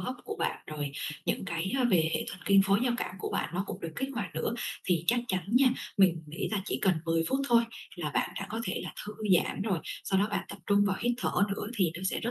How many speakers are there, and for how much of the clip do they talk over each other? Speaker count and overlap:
one, no overlap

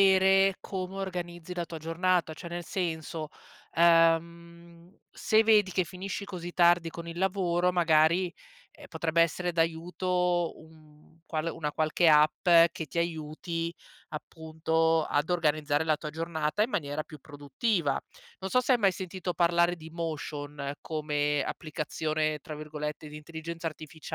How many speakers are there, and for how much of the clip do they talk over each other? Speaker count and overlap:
one, no overlap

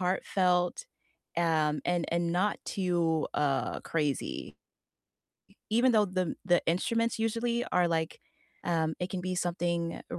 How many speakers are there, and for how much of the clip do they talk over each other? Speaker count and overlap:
one, no overlap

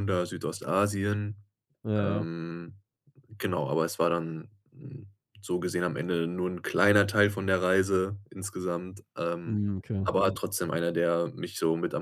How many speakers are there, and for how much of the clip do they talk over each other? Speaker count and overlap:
two, about 6%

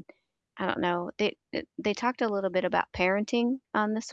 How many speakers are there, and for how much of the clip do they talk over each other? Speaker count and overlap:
one, no overlap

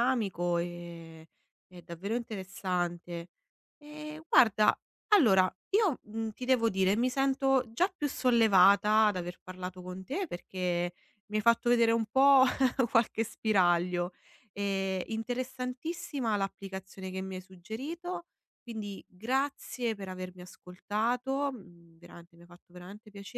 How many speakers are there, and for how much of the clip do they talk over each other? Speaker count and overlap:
one, no overlap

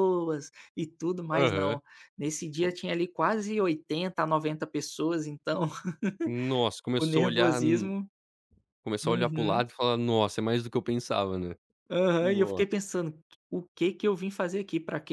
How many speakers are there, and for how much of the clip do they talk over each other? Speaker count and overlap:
two, about 16%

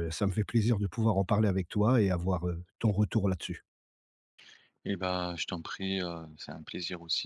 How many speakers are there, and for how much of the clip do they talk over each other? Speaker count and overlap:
two, no overlap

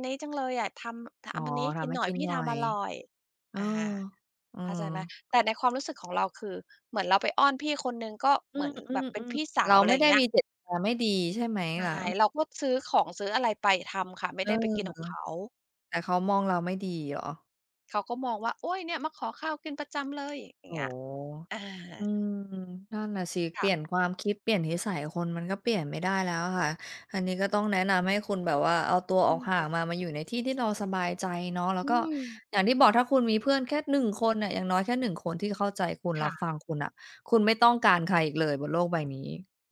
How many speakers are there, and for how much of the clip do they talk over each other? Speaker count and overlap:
two, about 10%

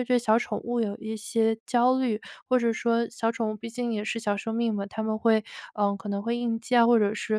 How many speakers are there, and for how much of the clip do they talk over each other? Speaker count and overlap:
one, no overlap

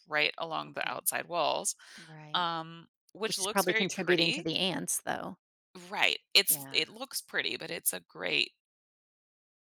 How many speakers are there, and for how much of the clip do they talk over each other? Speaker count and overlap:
two, about 18%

